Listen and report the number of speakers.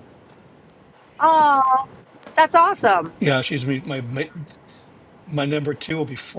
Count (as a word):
two